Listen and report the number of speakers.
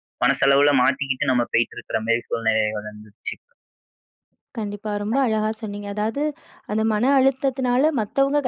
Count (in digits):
2